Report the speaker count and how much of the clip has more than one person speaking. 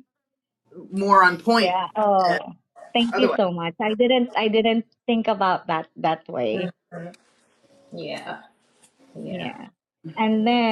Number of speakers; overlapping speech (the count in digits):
3, about 8%